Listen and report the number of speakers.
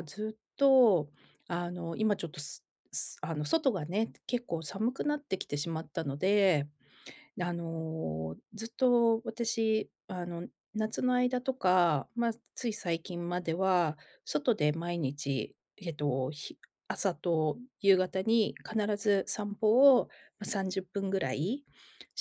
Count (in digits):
1